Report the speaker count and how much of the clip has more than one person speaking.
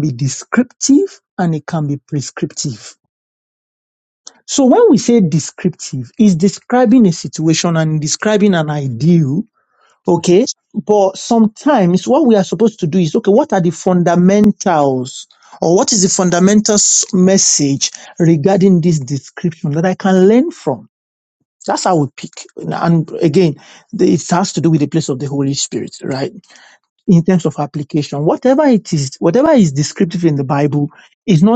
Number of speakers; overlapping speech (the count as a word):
one, no overlap